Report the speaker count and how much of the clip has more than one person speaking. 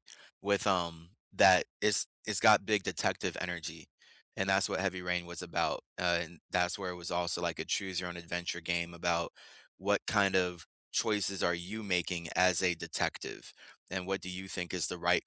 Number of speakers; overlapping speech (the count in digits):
1, no overlap